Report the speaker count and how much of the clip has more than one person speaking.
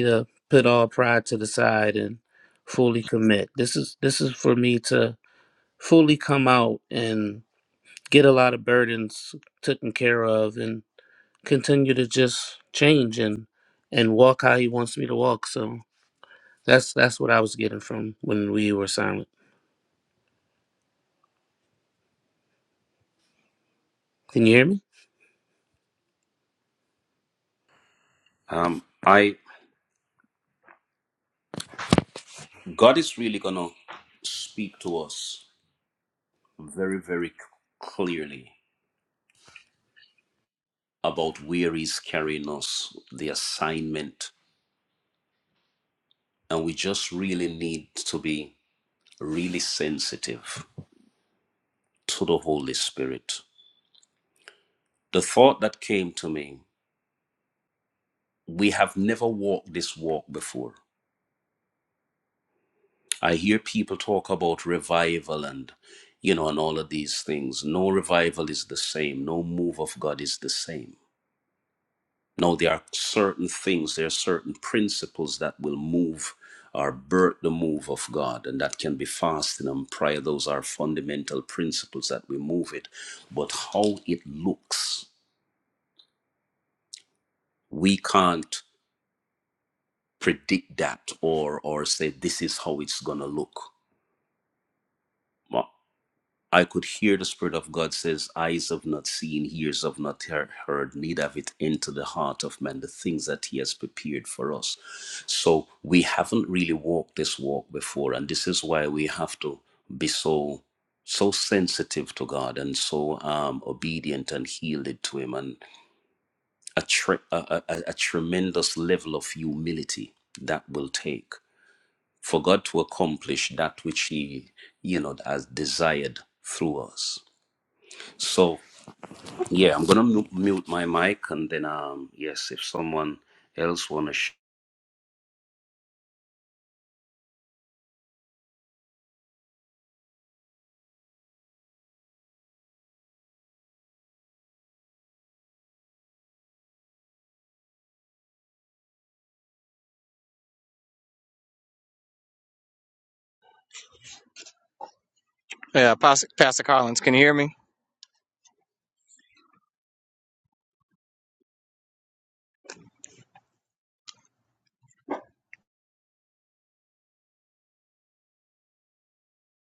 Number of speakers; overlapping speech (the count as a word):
three, no overlap